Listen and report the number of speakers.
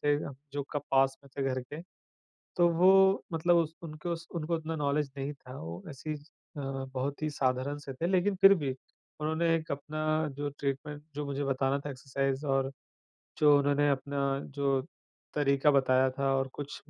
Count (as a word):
one